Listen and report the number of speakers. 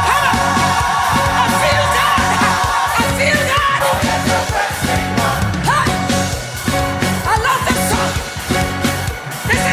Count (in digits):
1